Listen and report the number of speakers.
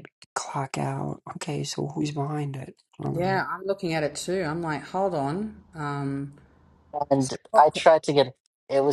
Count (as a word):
three